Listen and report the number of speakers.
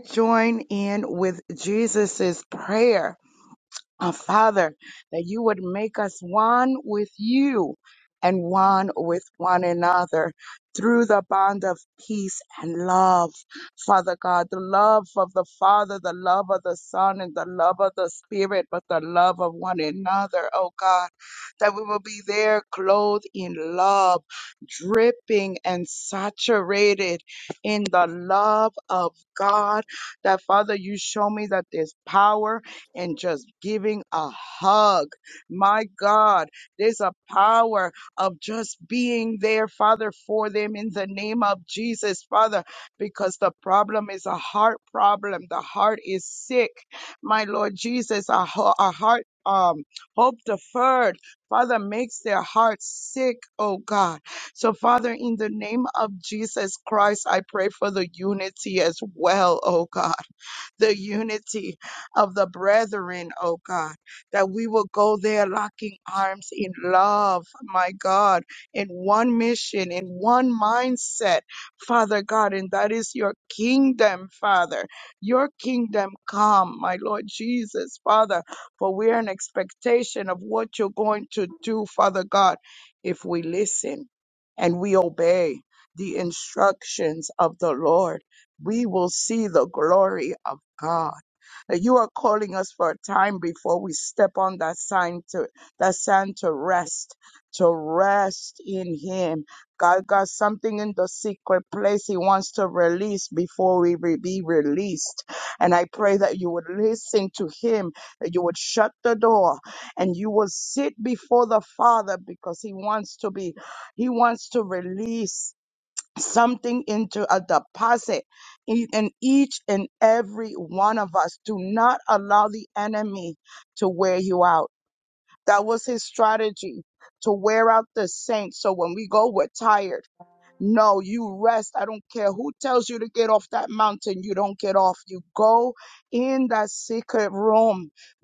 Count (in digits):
1